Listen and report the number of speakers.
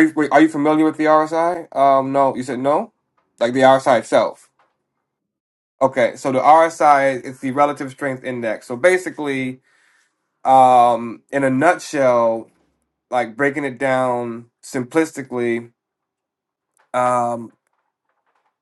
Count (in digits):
1